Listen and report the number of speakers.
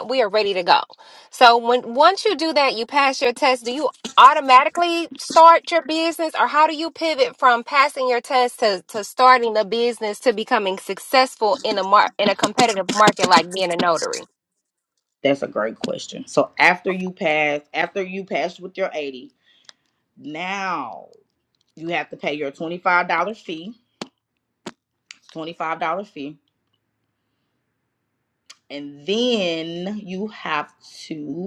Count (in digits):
2